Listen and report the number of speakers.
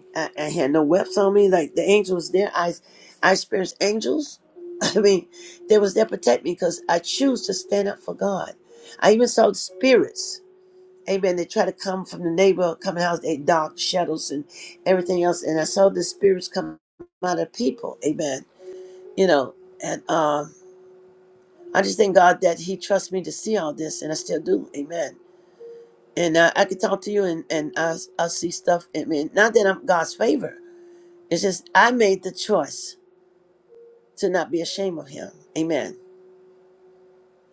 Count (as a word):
one